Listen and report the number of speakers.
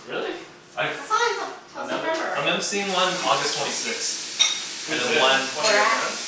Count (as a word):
three